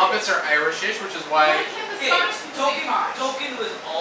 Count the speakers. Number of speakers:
3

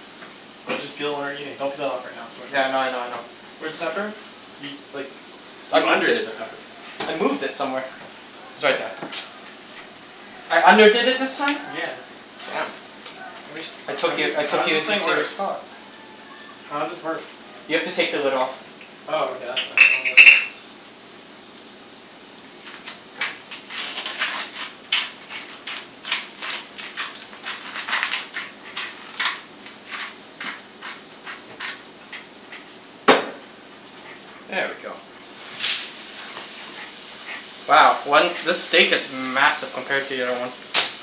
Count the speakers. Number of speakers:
2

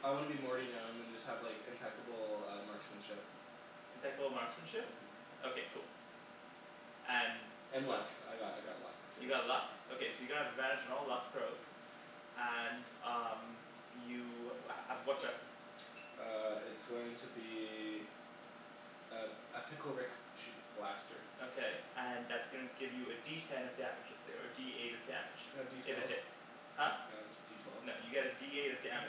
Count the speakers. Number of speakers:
2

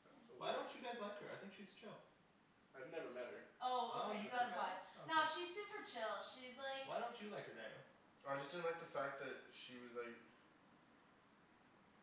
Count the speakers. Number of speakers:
4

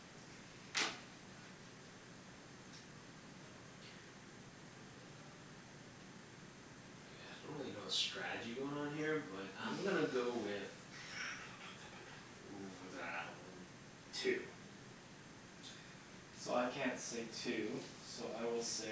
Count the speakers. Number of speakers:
2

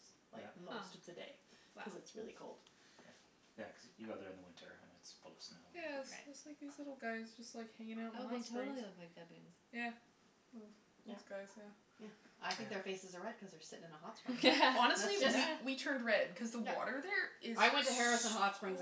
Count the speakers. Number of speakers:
4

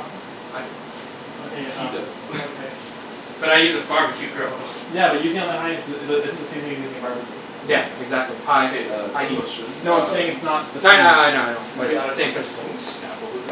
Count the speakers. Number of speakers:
3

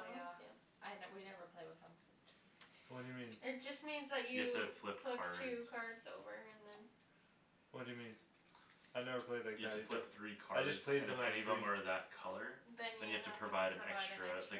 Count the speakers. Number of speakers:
4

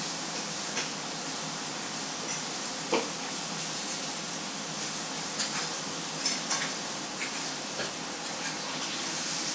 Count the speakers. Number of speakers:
0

